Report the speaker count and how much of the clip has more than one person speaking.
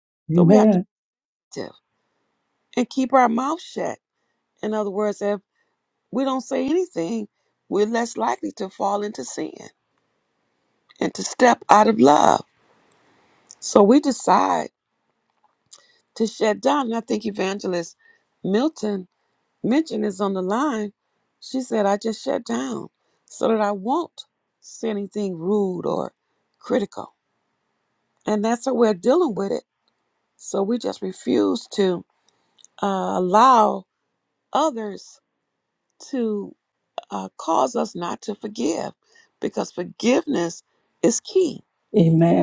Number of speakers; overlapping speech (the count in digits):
2, about 1%